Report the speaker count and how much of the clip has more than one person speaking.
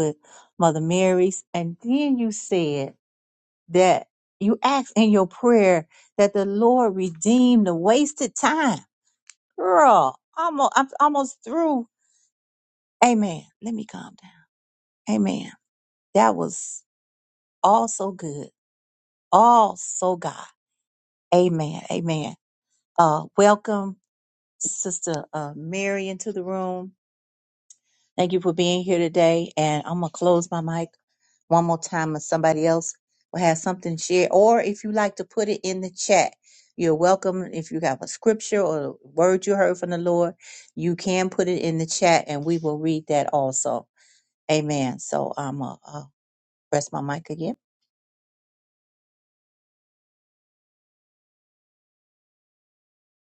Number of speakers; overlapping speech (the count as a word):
one, no overlap